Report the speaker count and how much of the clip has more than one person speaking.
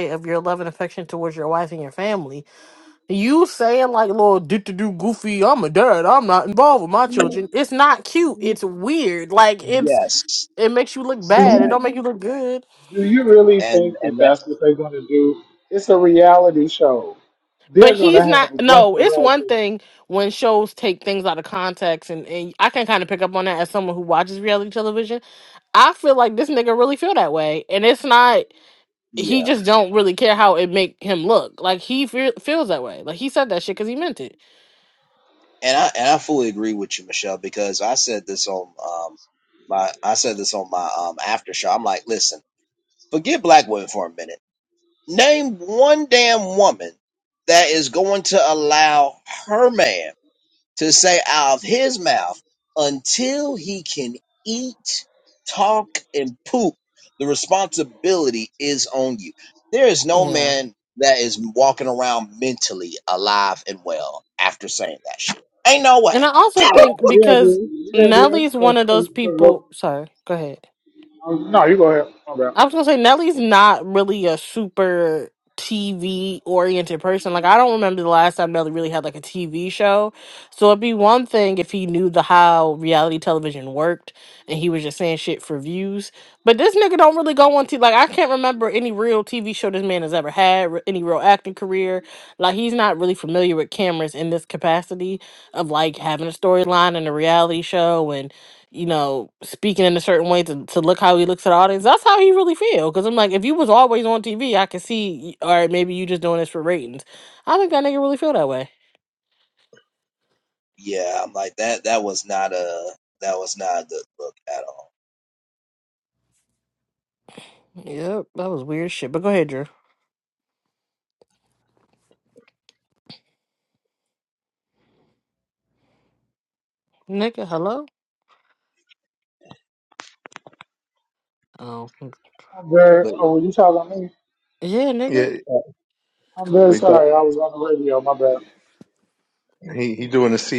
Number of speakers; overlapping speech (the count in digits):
4, about 5%